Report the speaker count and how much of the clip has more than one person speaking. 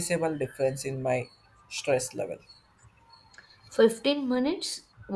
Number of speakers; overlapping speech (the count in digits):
2, no overlap